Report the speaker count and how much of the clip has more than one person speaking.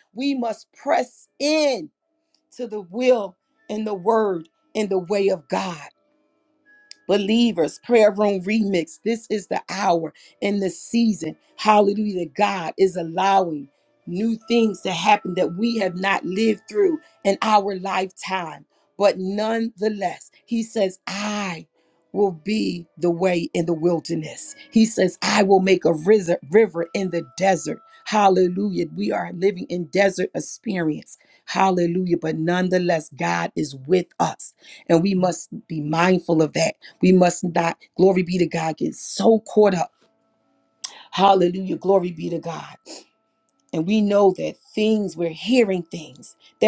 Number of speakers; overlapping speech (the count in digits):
1, no overlap